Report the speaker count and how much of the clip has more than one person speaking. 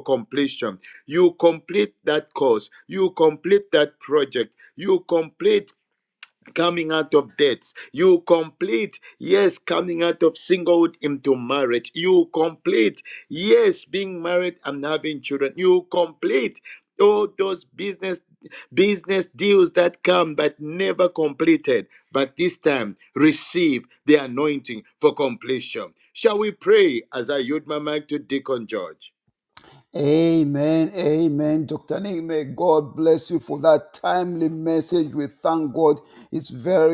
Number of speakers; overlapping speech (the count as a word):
two, no overlap